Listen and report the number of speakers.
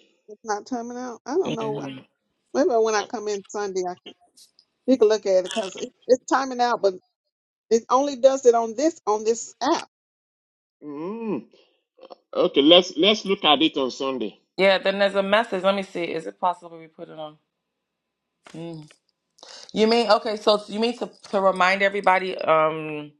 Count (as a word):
three